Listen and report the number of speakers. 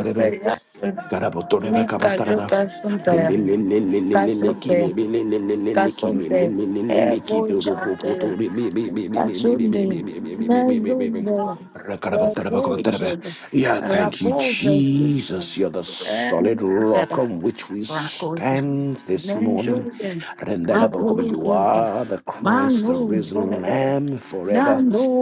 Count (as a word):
two